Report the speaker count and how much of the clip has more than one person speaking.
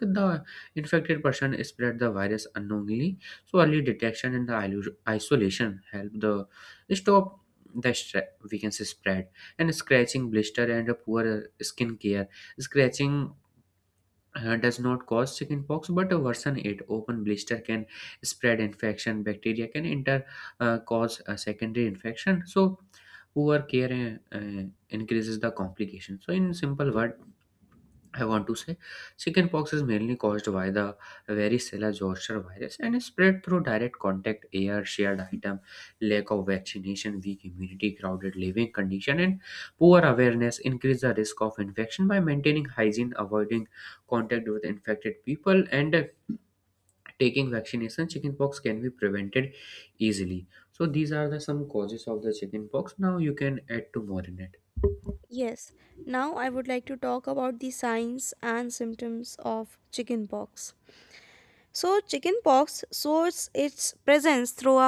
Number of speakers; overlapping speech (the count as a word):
two, no overlap